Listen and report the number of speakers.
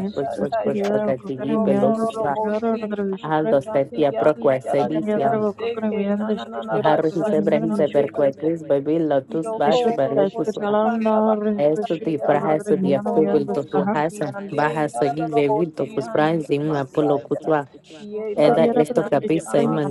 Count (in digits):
3